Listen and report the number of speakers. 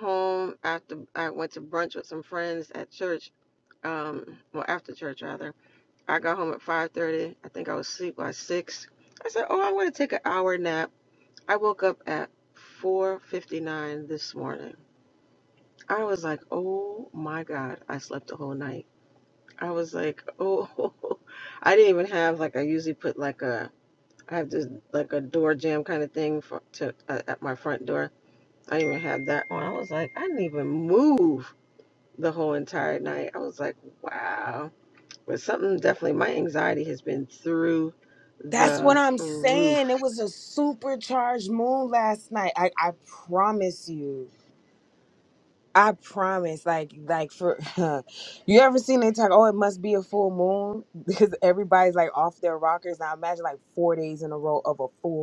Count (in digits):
2